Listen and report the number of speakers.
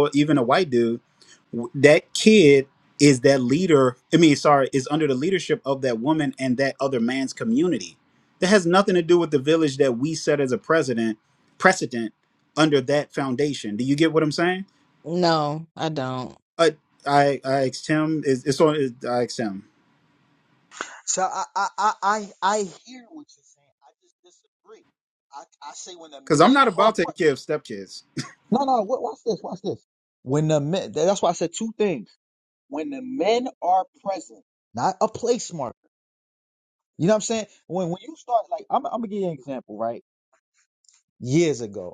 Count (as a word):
three